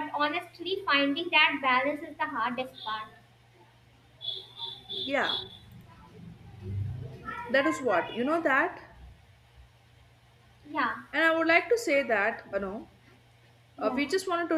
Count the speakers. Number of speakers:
two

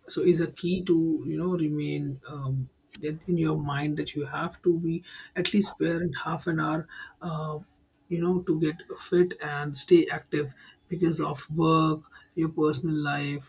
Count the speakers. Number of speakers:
one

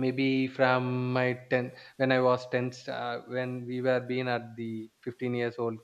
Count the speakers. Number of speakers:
one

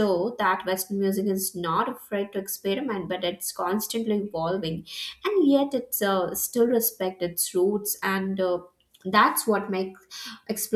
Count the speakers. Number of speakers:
one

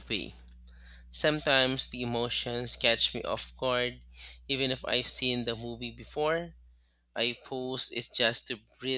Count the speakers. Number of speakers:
one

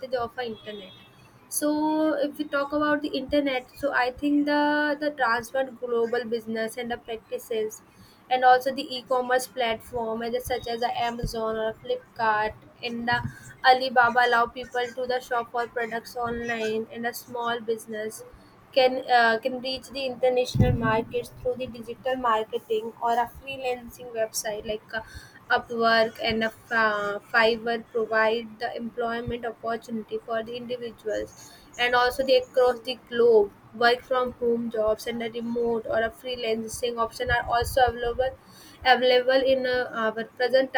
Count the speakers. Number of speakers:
one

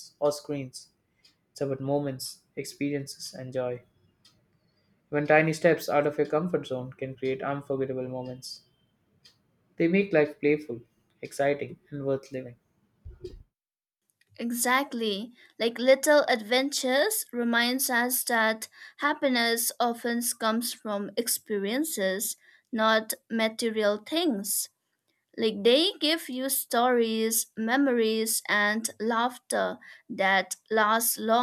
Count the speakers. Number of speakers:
two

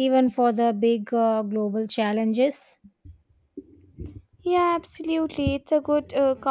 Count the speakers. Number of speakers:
two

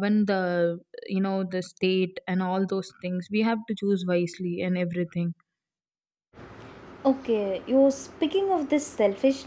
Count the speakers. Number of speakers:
two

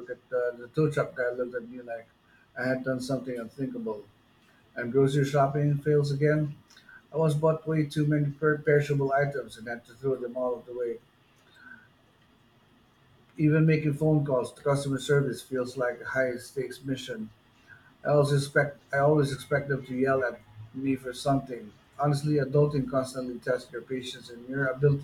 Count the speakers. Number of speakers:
one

